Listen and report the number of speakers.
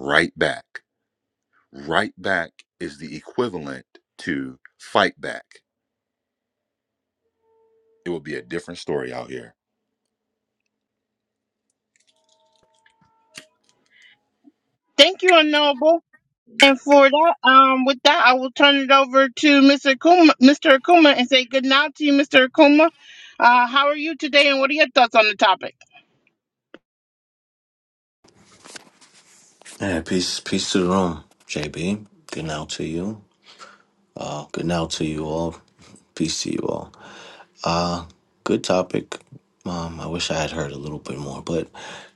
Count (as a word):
three